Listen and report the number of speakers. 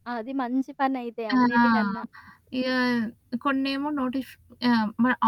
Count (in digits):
2